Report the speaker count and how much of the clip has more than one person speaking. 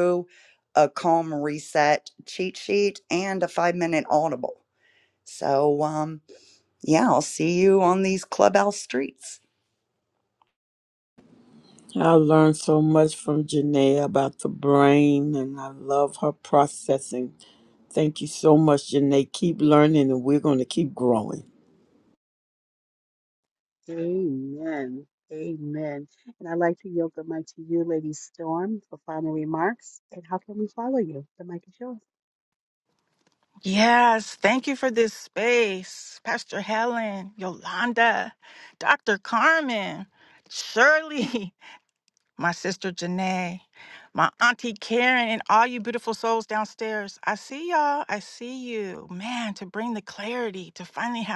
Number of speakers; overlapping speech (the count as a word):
four, no overlap